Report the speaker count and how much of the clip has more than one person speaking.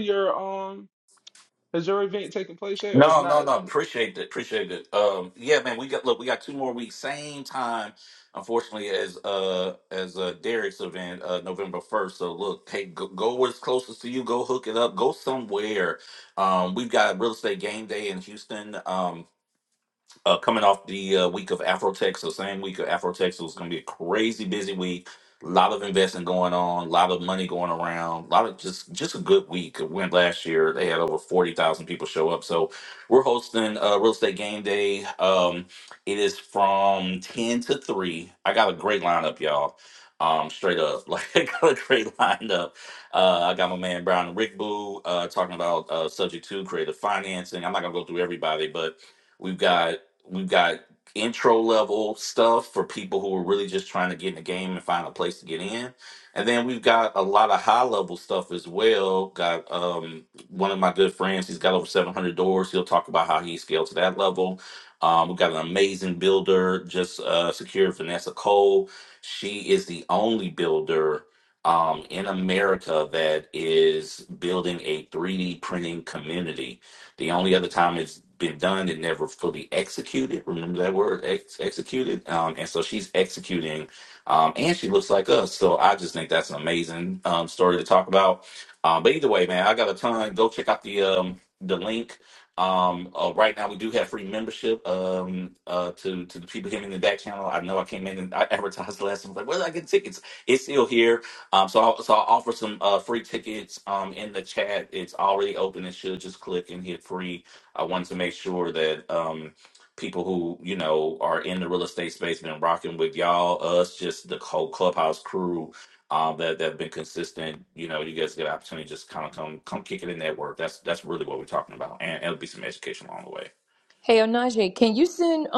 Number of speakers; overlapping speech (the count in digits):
3, under 1%